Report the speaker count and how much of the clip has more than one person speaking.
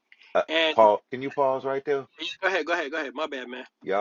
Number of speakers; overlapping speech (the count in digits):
2, about 7%